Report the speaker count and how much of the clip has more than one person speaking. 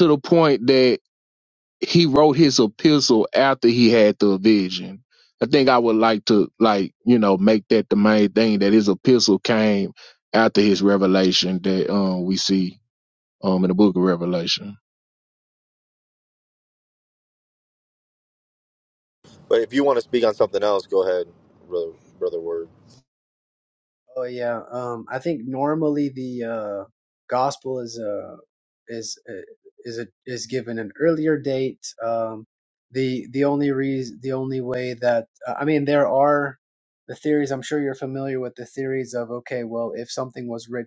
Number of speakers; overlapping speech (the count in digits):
3, no overlap